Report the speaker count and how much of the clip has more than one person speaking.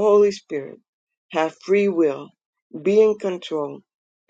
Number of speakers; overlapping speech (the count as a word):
one, no overlap